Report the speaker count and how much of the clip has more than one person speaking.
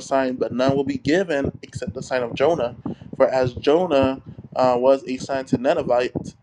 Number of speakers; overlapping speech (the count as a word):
one, no overlap